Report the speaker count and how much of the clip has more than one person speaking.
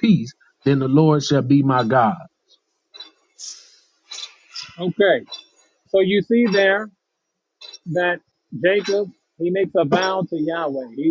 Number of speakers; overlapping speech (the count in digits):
2, no overlap